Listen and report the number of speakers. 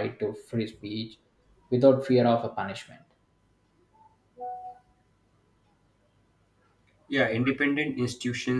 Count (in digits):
2